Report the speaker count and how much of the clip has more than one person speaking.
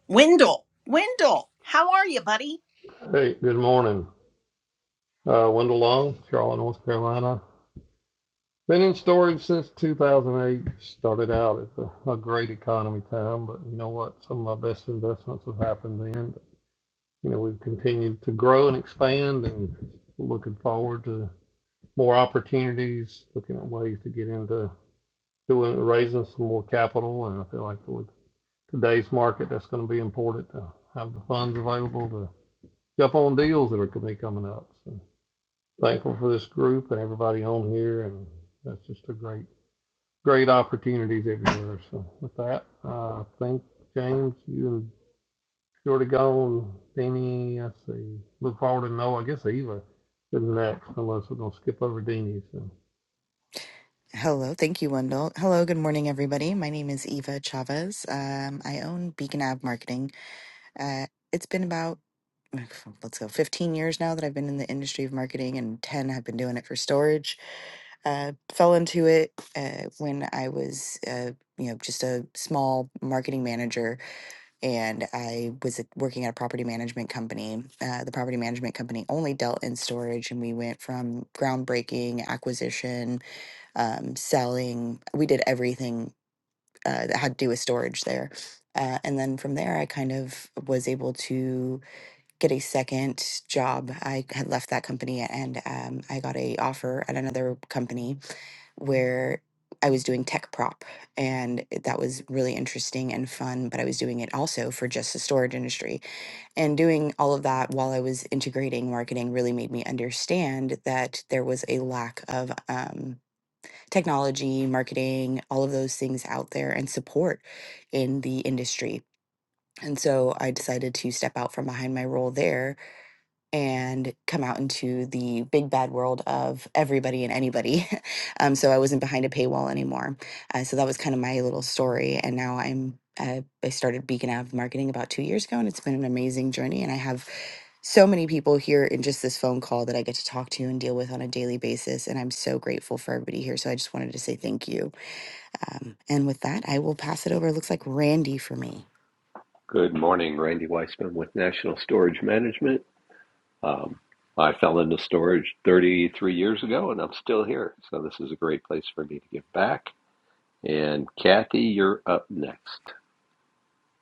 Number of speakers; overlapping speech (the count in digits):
4, no overlap